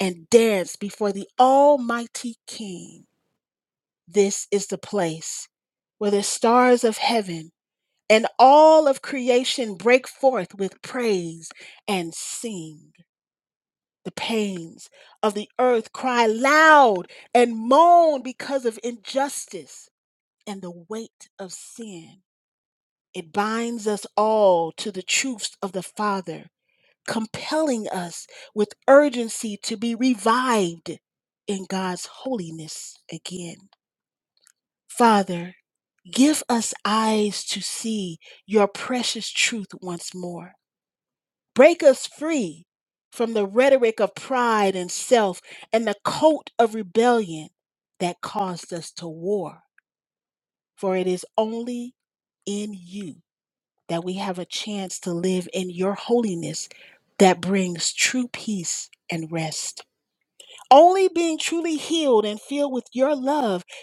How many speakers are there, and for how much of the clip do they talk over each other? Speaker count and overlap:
1, no overlap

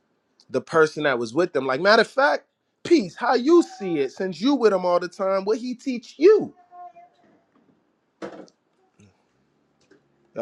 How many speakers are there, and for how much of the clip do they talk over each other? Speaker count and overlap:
1, no overlap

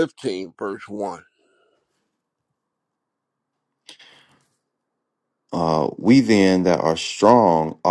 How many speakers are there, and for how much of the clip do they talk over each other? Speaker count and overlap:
2, no overlap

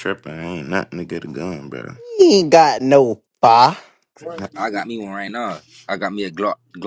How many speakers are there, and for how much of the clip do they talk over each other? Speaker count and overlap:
3, no overlap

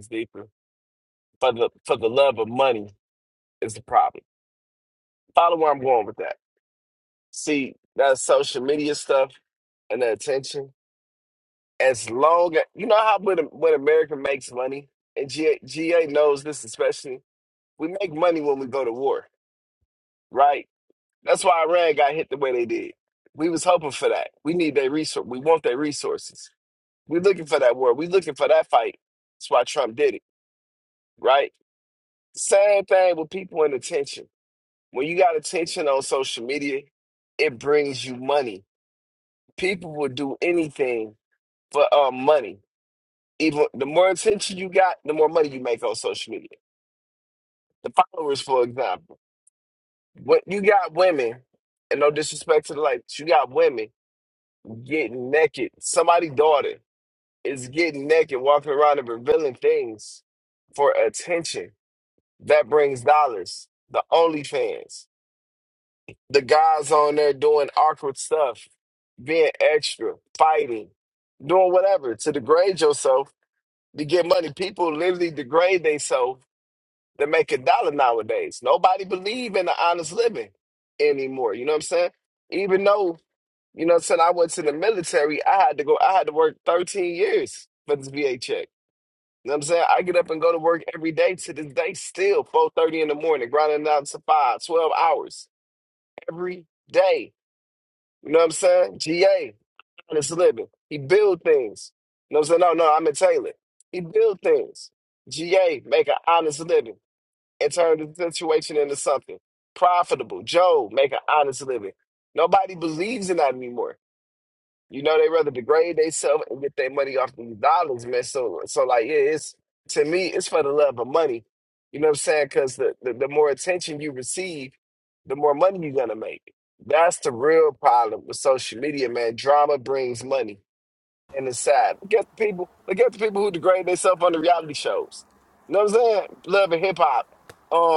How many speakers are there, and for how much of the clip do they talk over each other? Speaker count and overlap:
1, no overlap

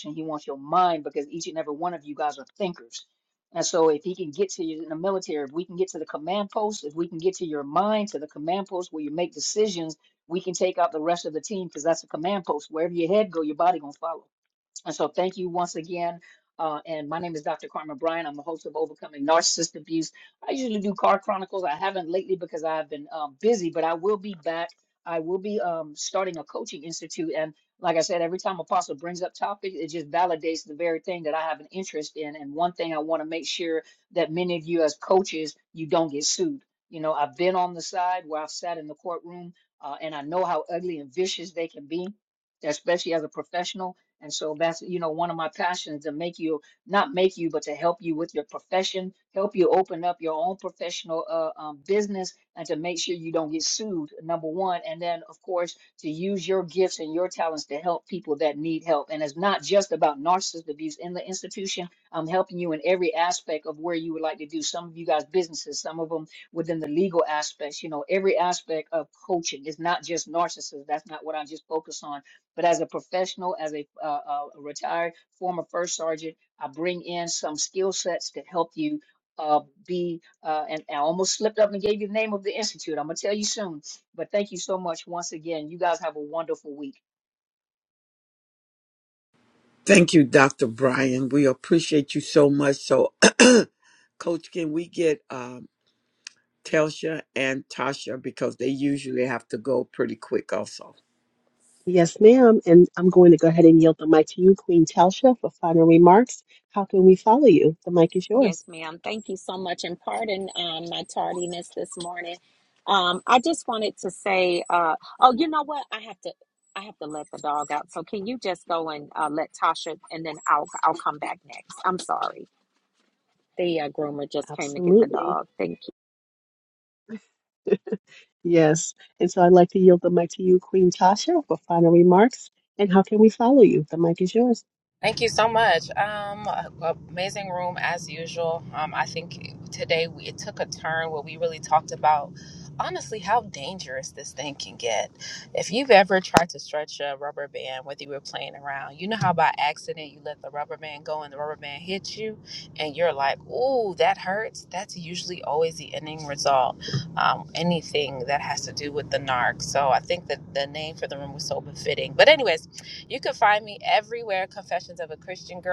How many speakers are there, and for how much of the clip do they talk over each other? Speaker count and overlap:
5, about 1%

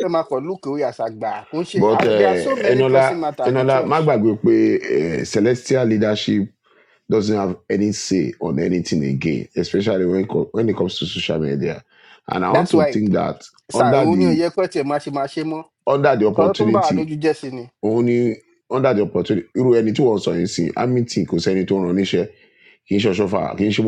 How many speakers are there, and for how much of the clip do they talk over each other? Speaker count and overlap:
2, about 17%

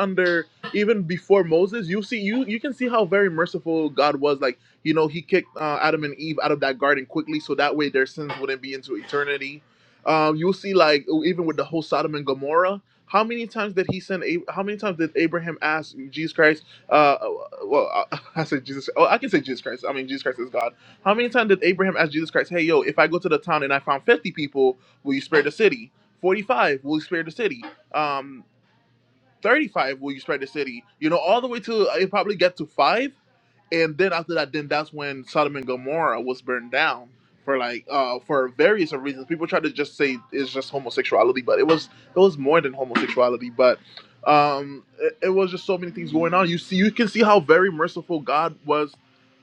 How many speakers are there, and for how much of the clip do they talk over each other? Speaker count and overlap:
1, no overlap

